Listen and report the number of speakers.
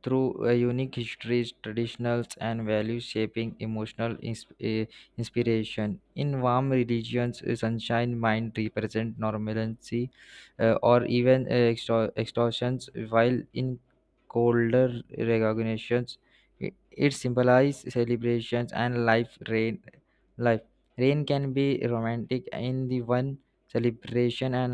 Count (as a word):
one